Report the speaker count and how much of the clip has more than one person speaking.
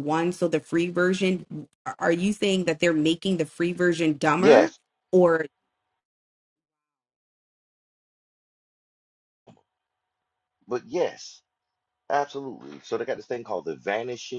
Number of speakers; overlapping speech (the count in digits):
2, about 2%